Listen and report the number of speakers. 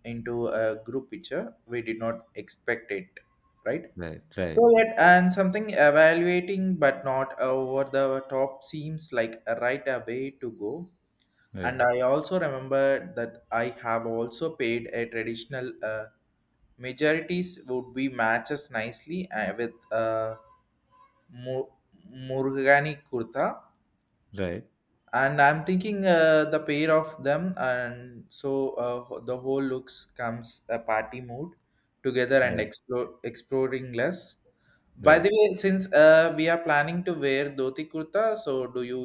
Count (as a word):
two